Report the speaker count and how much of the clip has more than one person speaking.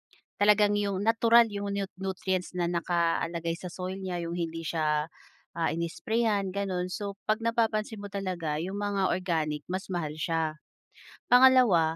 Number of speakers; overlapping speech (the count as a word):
one, no overlap